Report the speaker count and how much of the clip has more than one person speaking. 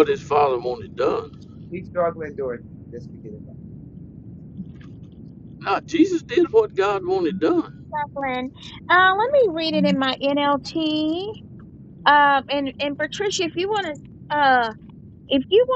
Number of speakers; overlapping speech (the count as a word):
three, no overlap